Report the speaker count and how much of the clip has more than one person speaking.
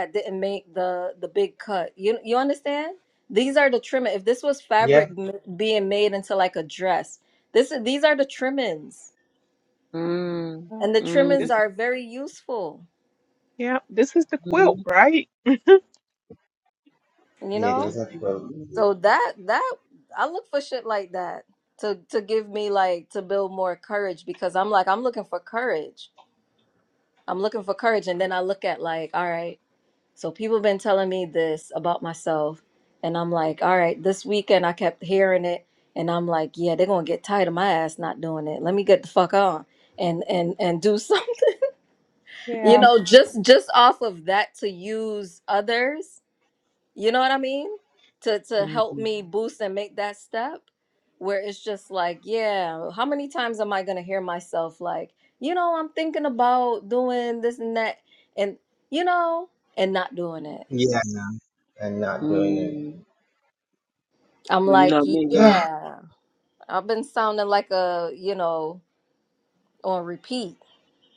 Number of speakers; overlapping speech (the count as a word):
four, about 6%